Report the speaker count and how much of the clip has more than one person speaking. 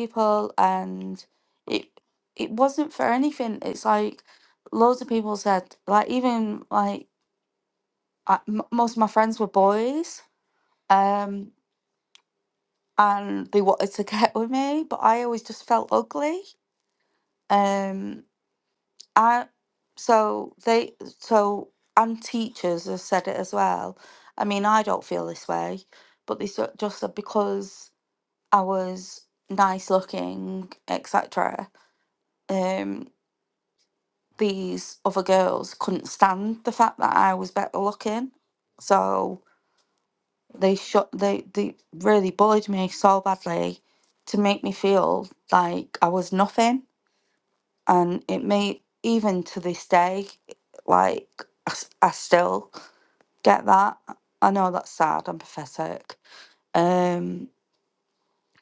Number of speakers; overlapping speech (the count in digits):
1, no overlap